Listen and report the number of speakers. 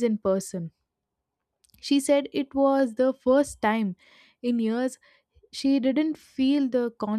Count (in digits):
1